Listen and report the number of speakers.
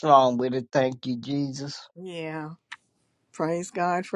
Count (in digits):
2